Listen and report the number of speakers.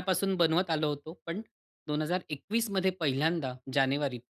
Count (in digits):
1